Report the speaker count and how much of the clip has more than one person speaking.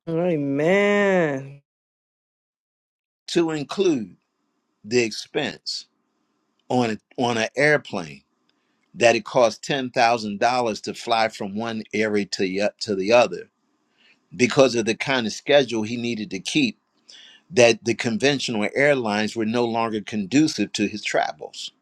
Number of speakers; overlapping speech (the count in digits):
2, no overlap